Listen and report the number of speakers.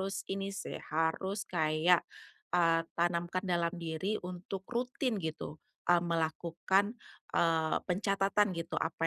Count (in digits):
1